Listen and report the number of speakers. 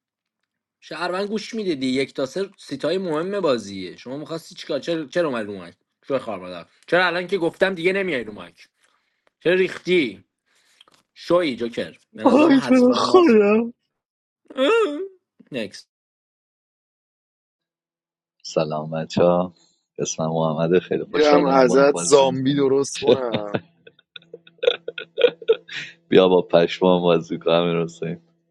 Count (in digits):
3